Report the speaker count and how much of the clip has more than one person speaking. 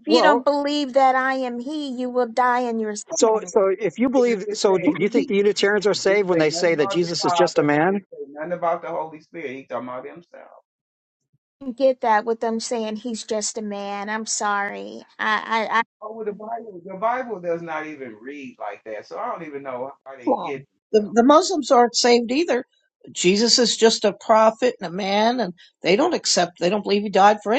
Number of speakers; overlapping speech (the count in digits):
4, about 15%